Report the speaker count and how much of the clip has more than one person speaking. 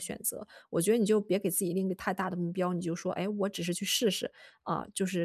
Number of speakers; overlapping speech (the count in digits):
1, no overlap